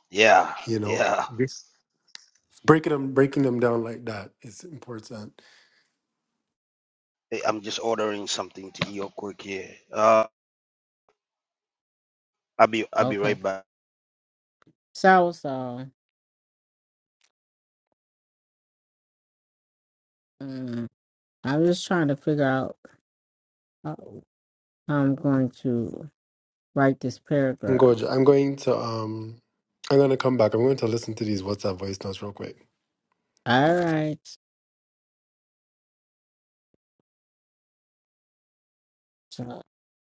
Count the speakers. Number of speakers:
3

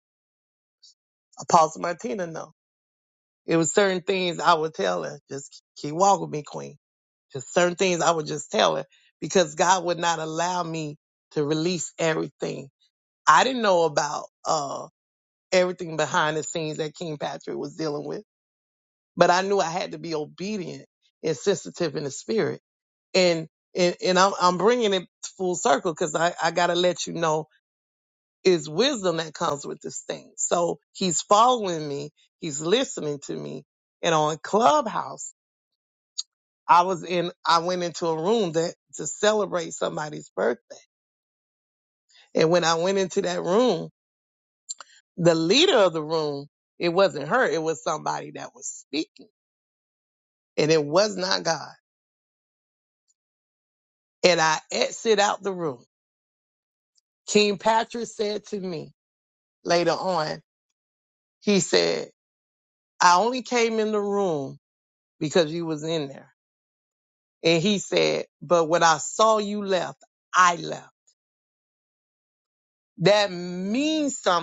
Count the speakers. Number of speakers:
1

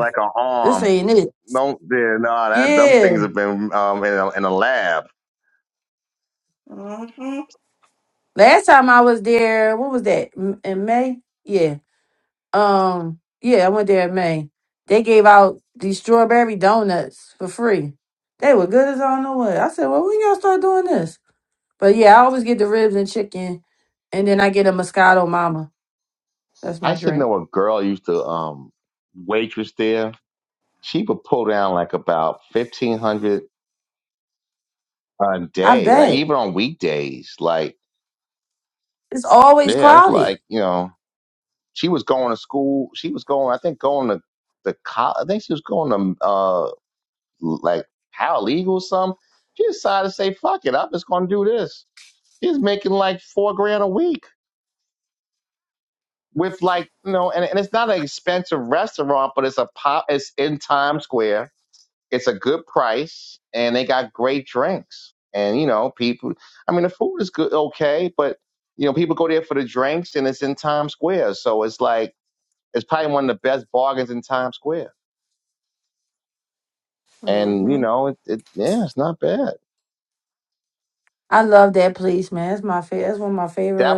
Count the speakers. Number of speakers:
3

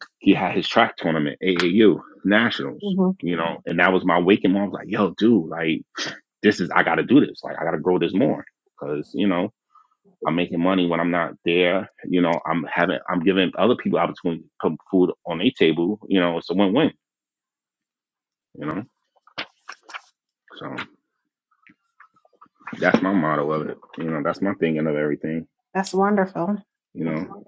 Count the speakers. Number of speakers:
2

